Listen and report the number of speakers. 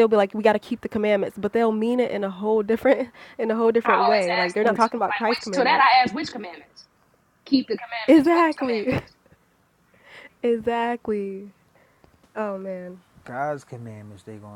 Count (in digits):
3